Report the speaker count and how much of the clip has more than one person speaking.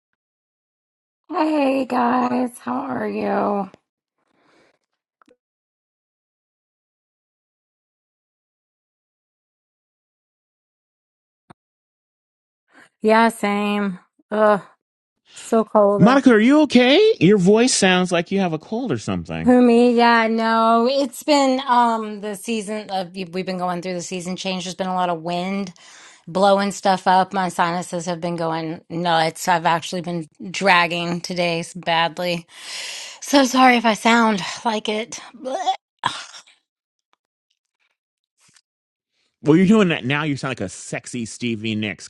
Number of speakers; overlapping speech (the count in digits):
2, about 1%